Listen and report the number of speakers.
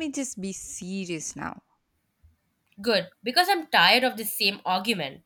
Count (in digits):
2